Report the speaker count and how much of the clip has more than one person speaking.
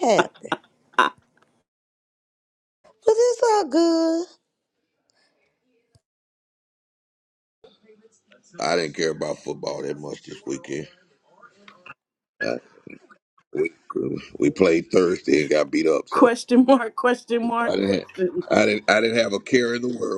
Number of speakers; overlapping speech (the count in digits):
3, about 4%